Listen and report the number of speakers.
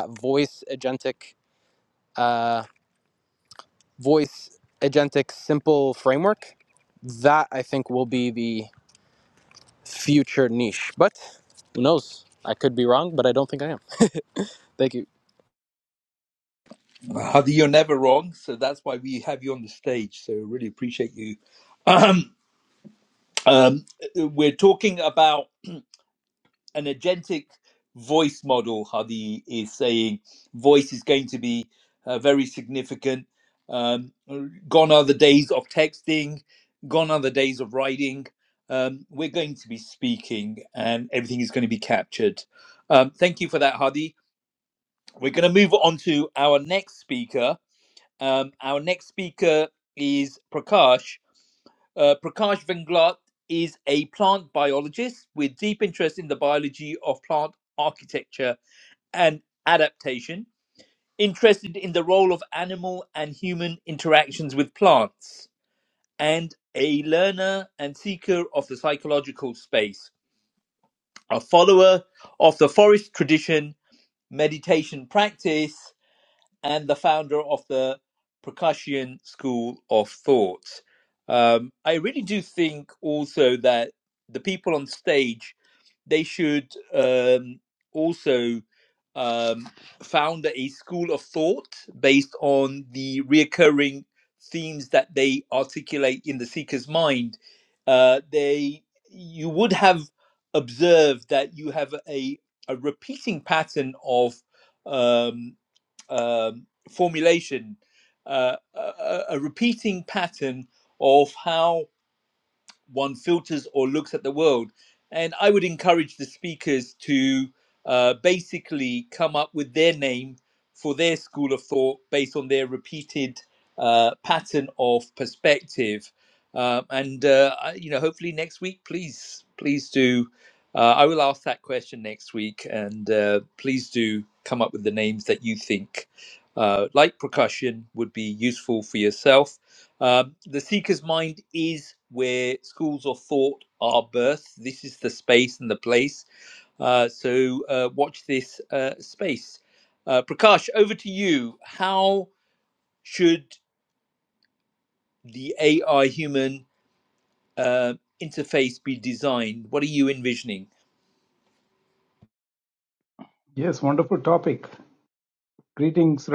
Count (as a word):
three